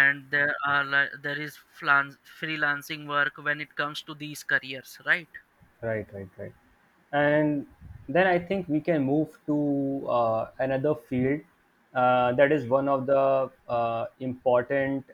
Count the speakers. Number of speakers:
two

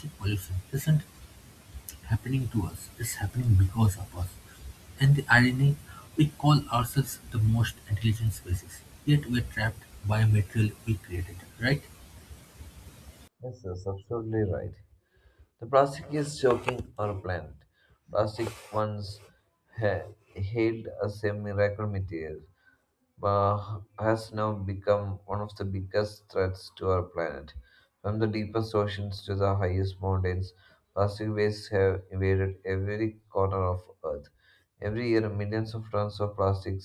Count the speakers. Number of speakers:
two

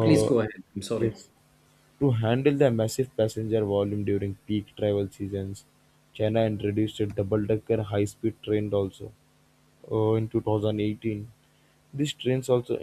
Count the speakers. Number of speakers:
two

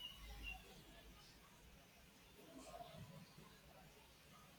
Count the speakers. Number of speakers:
zero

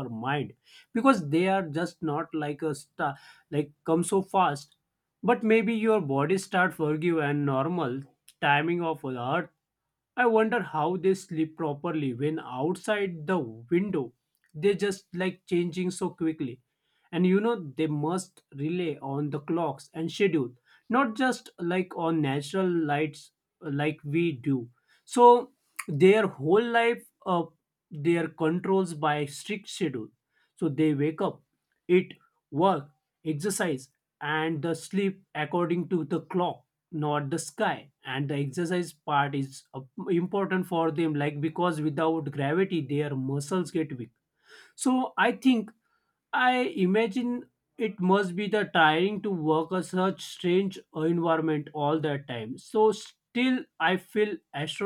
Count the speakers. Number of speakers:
one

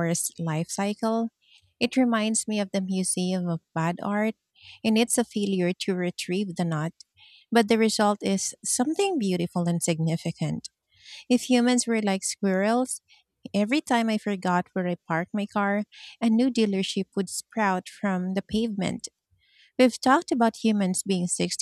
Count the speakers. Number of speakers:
one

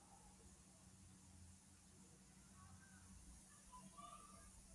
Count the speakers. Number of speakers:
zero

